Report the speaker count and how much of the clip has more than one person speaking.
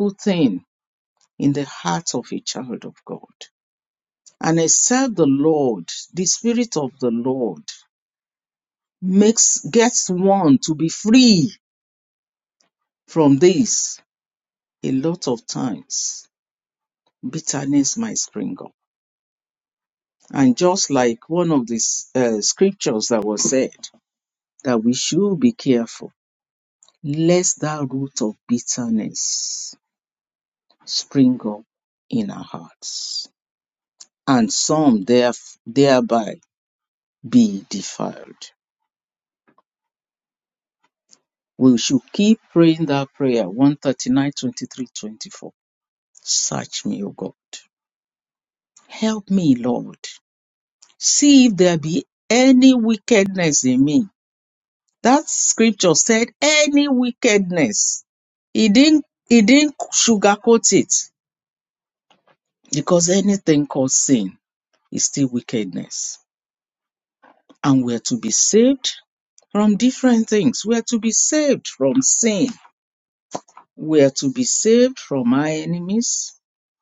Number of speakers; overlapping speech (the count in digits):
1, no overlap